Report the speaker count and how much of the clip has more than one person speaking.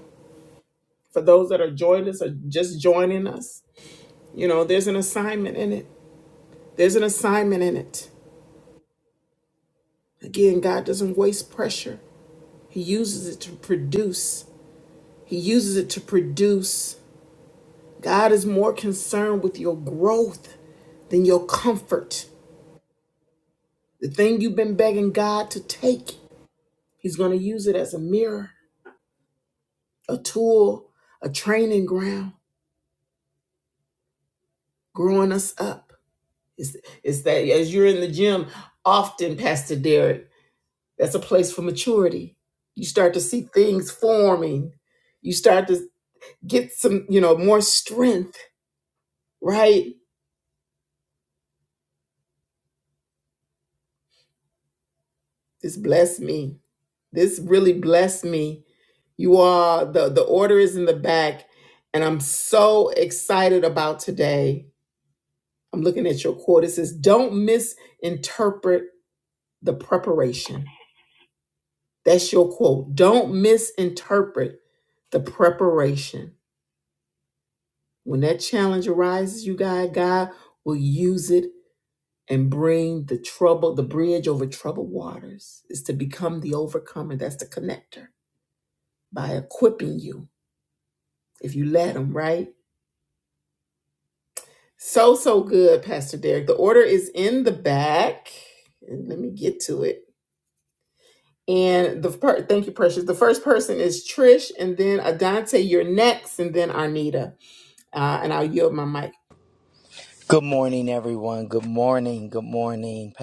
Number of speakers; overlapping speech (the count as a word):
two, no overlap